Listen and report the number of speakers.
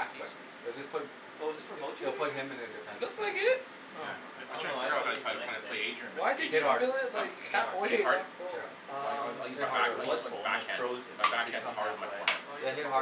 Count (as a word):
four